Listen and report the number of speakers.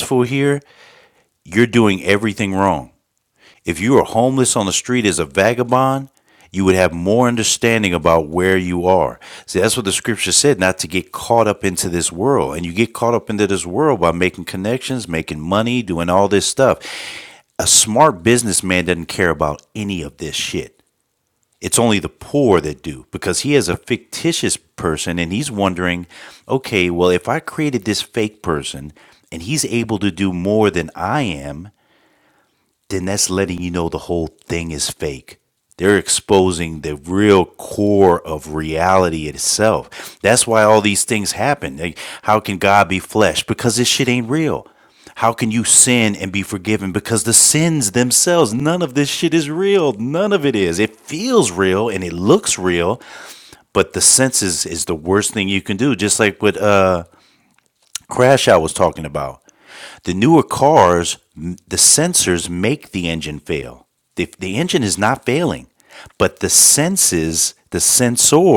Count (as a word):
one